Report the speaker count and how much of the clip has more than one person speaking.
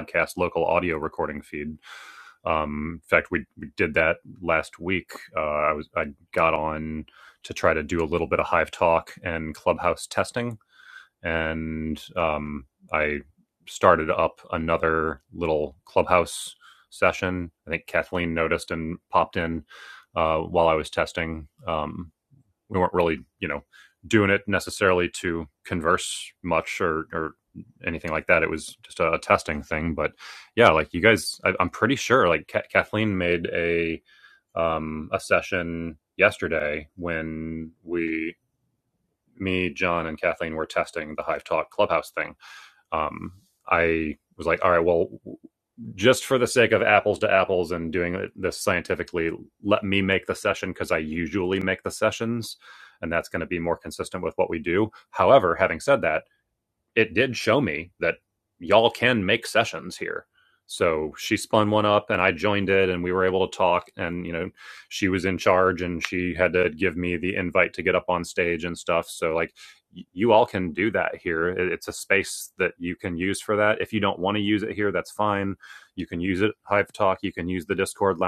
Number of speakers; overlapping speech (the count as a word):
one, no overlap